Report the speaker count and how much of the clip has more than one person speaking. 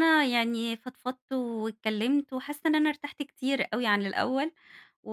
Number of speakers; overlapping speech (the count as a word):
one, no overlap